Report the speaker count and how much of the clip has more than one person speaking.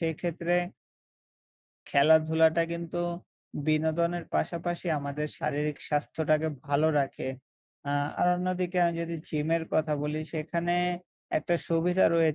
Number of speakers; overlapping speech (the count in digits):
1, no overlap